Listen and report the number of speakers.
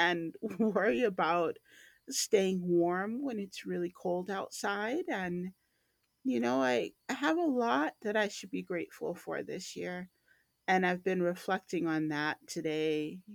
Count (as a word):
one